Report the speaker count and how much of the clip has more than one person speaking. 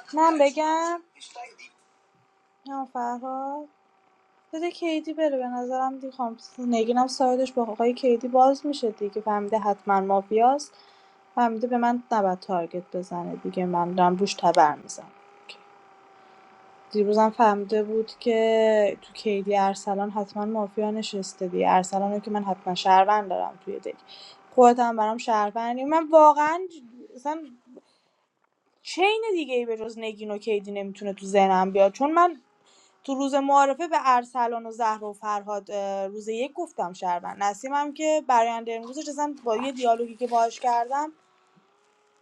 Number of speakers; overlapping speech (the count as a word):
one, no overlap